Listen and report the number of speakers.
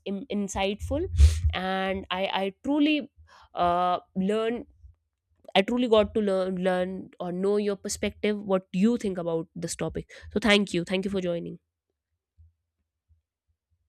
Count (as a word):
one